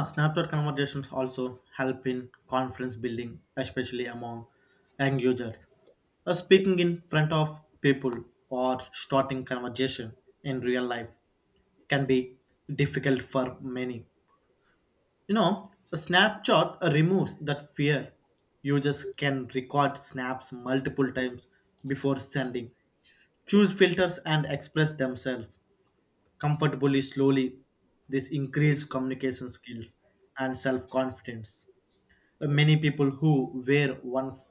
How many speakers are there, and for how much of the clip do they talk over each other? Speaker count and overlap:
1, no overlap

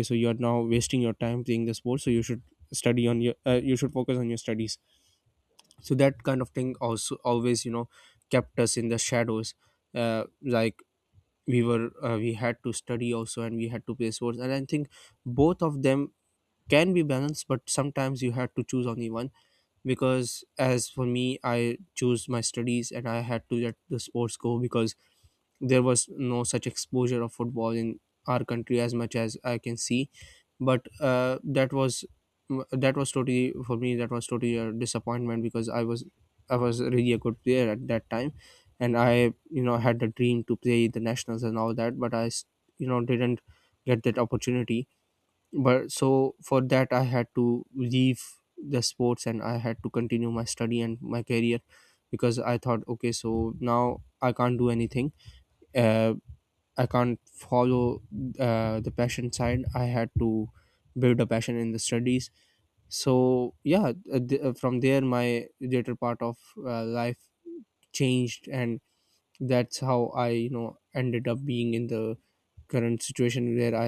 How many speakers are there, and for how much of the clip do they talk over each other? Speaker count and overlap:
1, no overlap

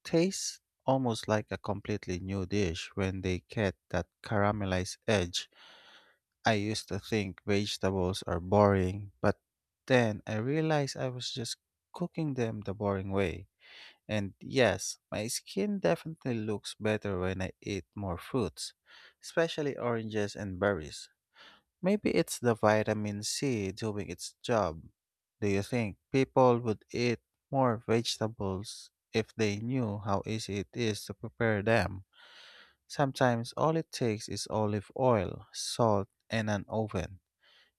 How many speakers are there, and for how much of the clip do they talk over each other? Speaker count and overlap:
1, no overlap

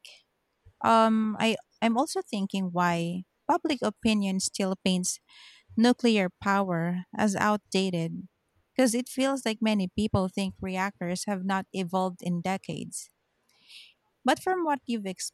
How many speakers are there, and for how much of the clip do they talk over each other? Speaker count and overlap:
1, no overlap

